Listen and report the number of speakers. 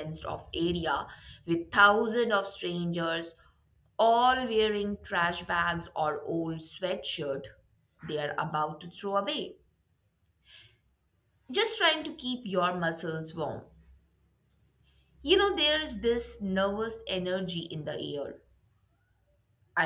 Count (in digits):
1